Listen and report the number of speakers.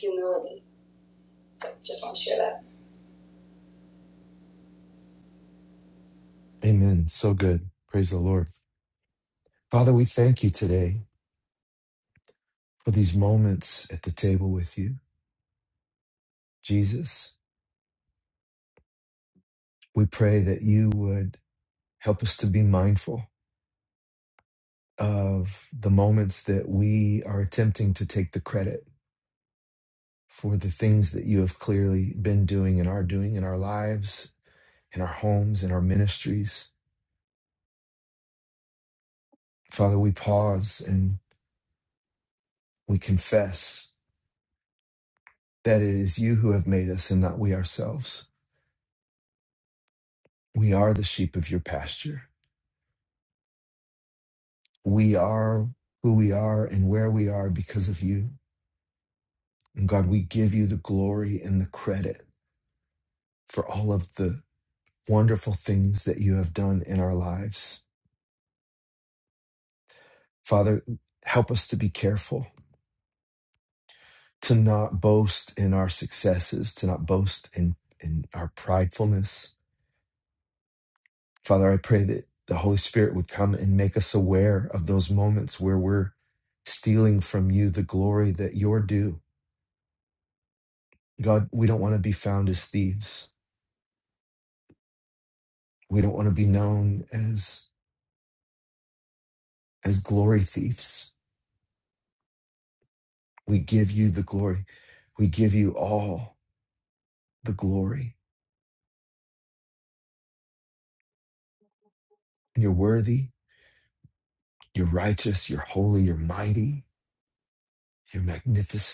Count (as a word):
two